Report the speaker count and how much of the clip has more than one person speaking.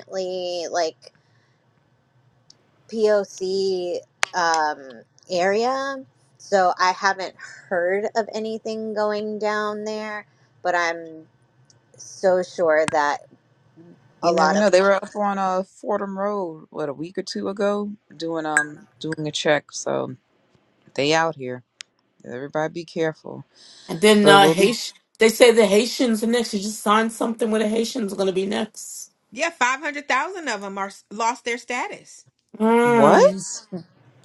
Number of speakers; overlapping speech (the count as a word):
four, about 5%